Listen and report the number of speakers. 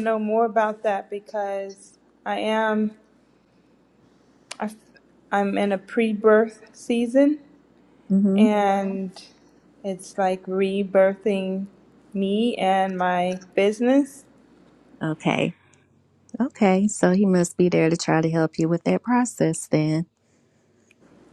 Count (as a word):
two